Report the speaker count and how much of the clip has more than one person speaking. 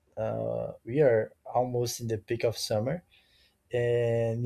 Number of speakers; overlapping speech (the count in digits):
1, no overlap